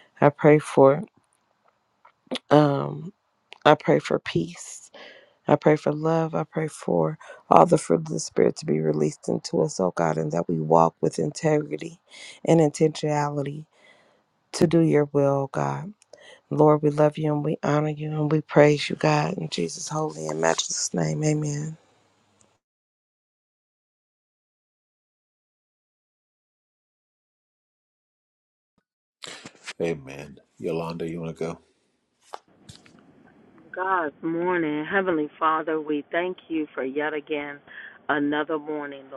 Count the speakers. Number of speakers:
three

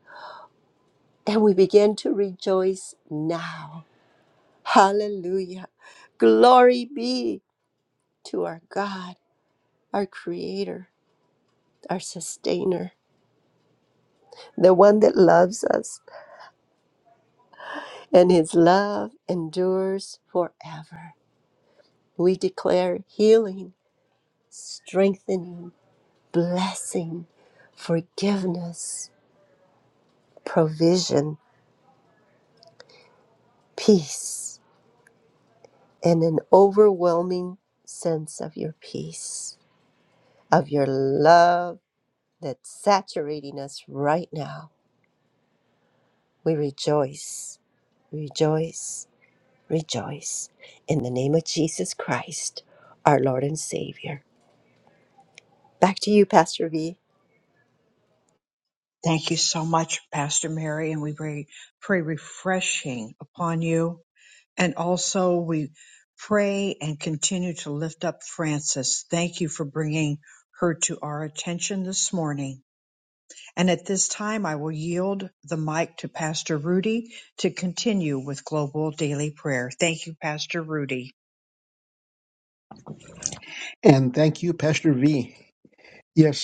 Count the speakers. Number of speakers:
three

